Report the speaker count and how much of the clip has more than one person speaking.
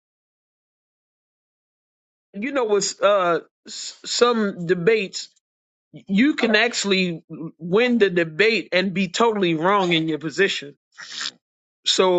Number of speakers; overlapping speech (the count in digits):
1, no overlap